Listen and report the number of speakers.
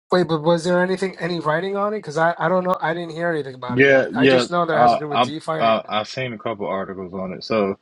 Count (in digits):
2